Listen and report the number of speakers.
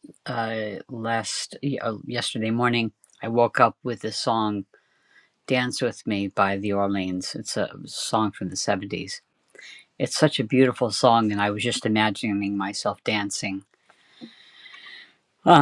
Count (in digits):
1